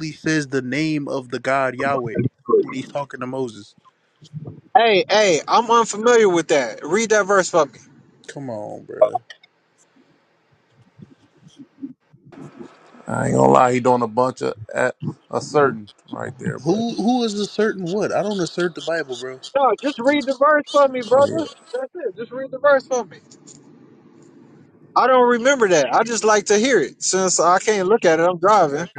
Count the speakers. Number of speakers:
three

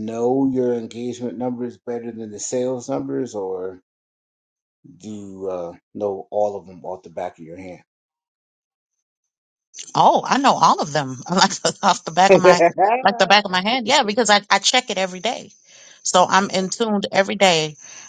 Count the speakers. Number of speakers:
two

